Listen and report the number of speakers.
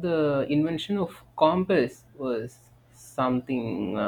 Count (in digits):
1